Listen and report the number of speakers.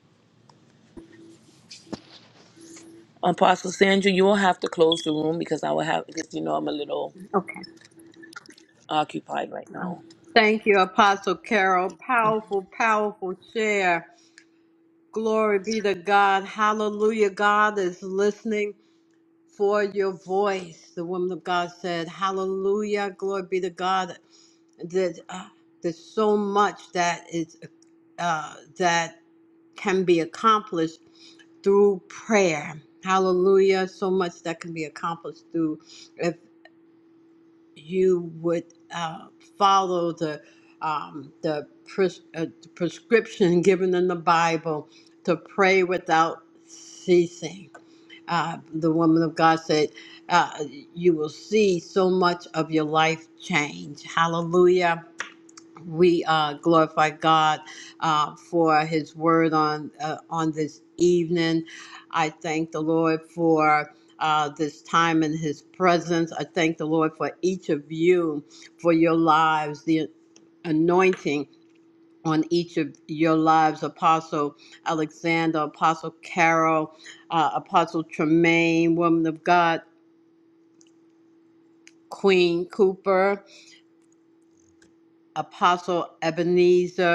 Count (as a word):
two